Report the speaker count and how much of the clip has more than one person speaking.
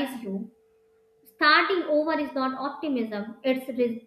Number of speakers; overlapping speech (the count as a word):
one, no overlap